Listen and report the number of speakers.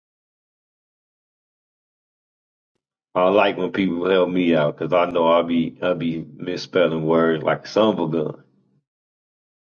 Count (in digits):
1